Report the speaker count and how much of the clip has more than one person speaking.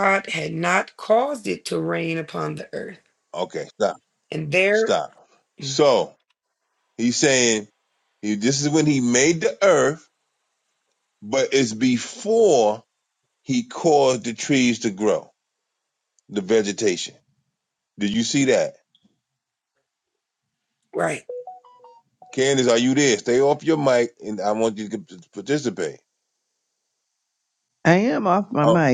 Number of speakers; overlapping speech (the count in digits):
3, about 2%